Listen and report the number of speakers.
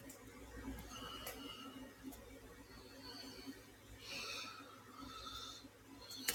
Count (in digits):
0